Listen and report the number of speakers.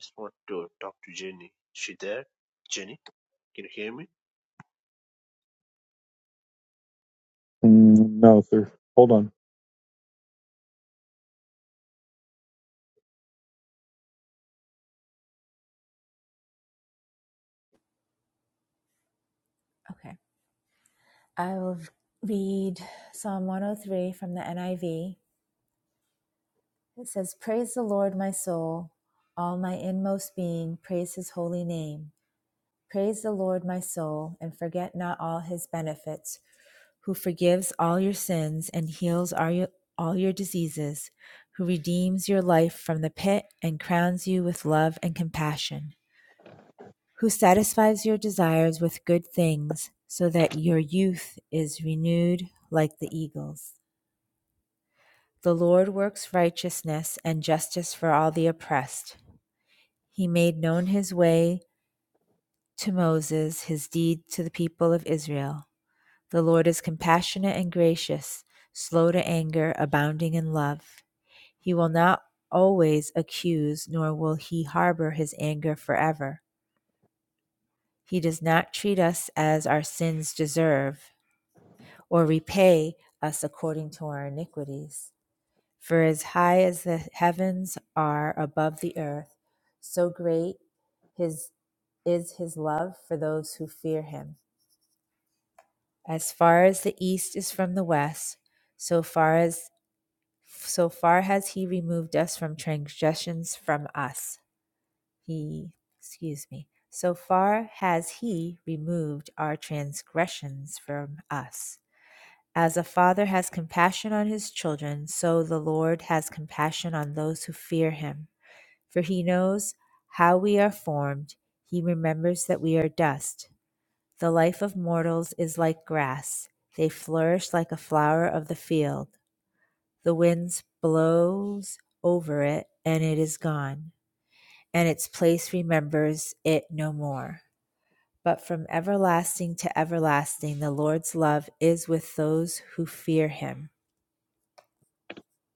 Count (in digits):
3